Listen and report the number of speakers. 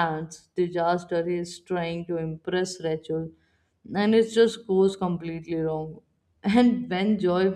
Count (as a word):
one